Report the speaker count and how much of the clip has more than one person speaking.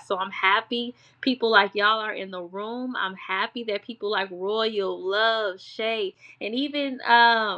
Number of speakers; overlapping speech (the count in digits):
1, no overlap